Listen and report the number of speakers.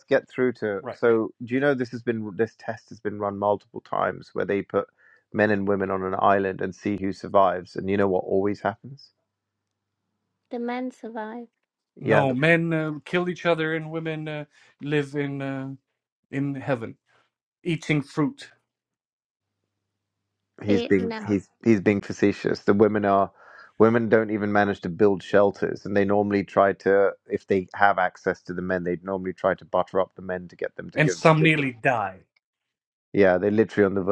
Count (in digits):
3